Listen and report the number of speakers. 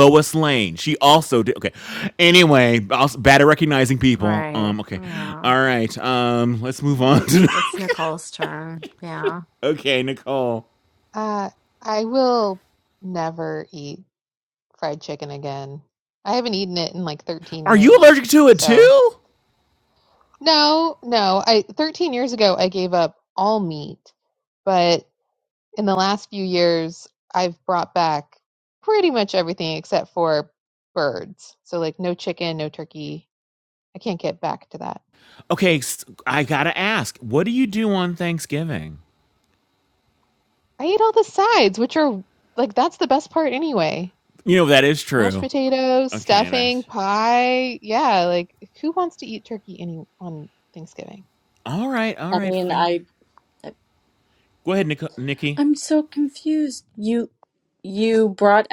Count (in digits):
4